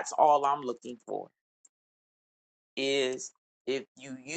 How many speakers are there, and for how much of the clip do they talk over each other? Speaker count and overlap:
1, no overlap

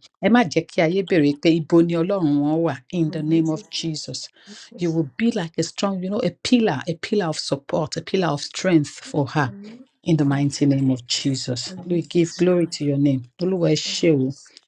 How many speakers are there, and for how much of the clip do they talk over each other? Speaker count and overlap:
2, about 11%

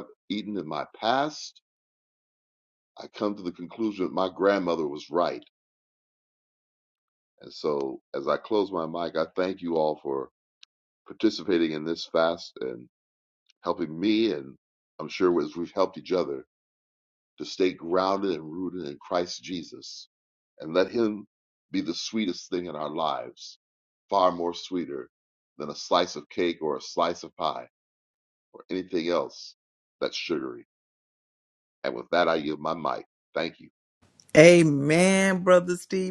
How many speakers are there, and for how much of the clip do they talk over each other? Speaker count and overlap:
2, no overlap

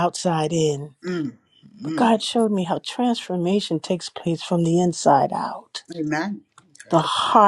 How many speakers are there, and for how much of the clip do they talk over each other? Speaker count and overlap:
2, about 3%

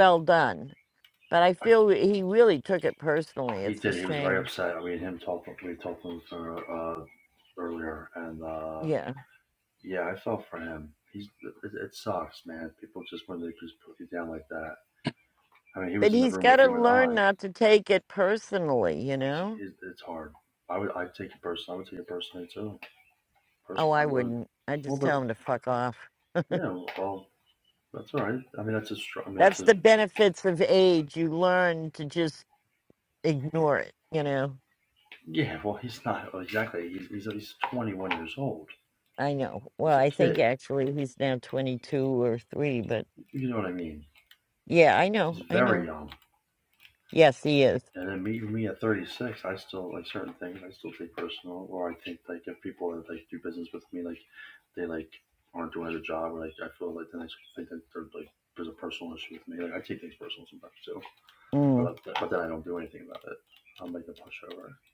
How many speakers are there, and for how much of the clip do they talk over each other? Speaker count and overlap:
2, about 8%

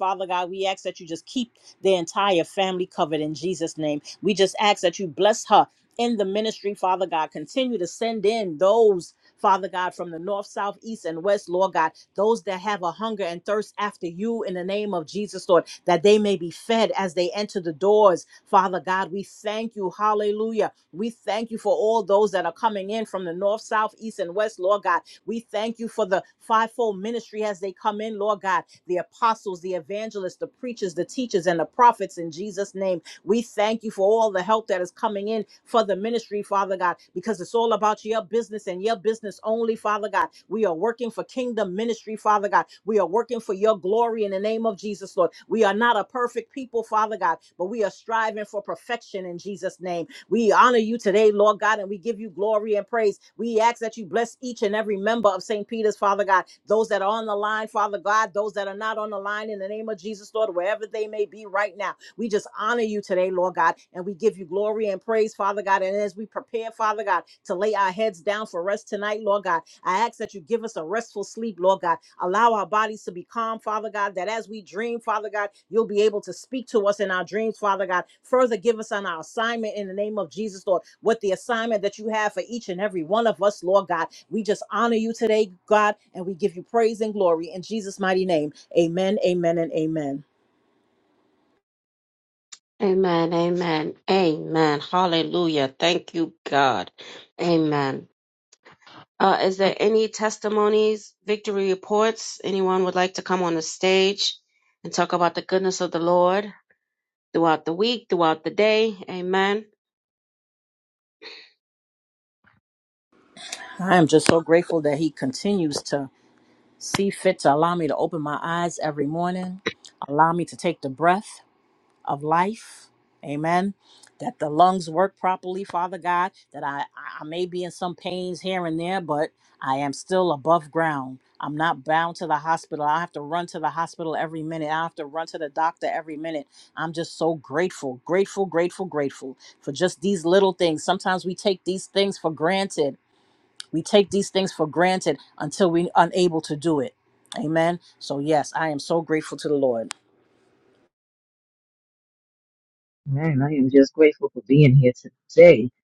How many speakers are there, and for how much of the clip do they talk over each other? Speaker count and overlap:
3, no overlap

